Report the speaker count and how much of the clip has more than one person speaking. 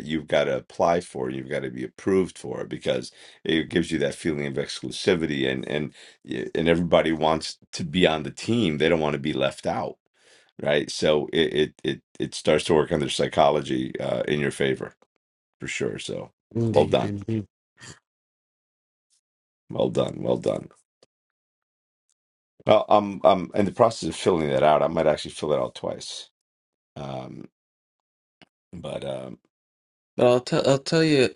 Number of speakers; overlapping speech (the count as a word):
two, about 1%